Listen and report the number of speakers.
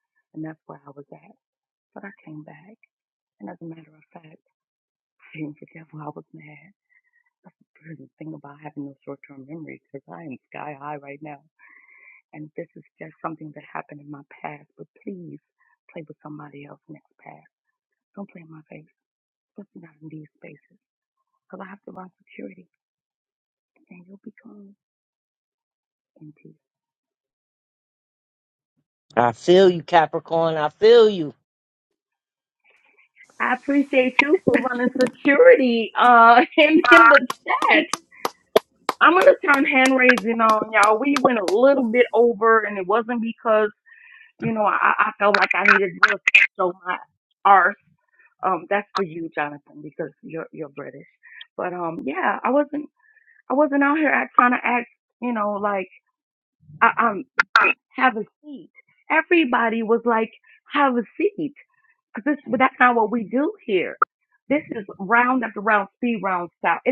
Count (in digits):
2